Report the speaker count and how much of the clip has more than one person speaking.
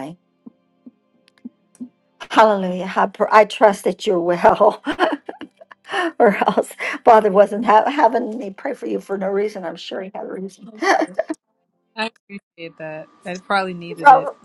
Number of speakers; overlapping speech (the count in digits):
2, about 2%